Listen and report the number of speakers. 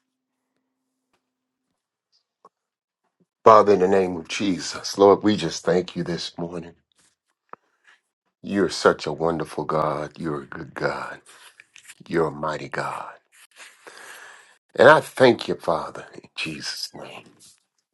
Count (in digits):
1